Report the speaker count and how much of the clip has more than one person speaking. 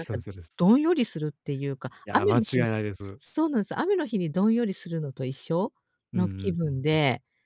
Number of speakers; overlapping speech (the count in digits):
2, about 19%